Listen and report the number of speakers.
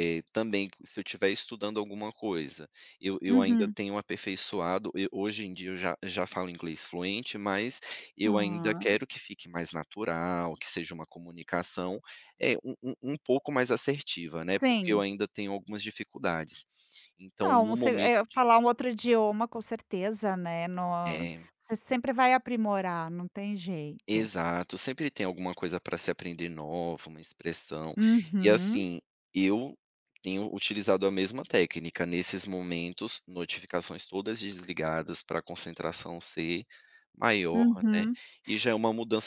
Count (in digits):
2